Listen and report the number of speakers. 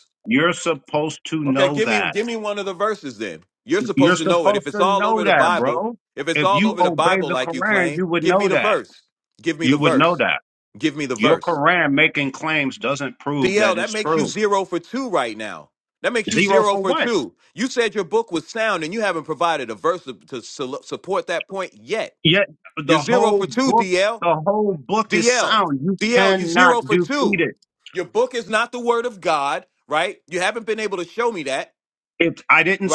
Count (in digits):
2